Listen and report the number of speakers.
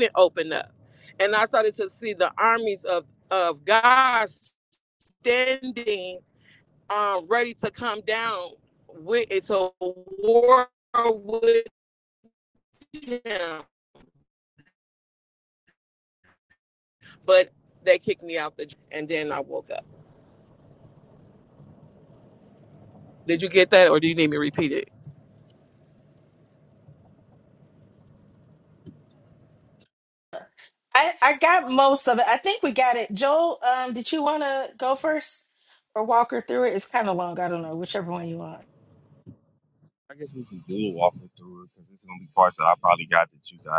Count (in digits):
3